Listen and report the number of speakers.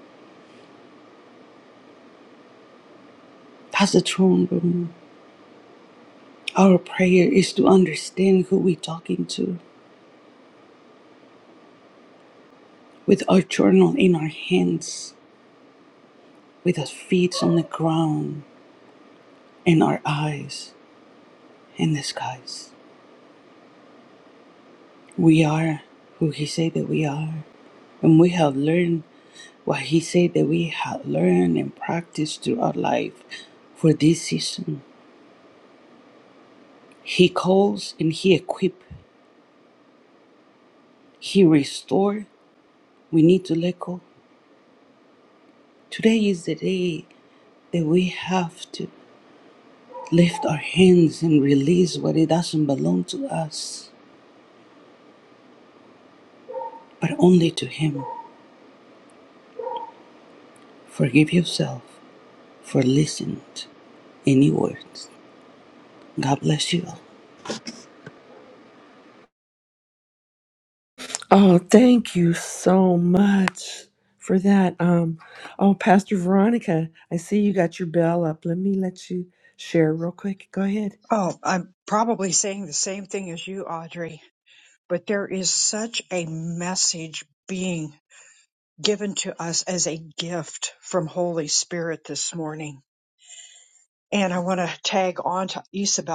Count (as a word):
three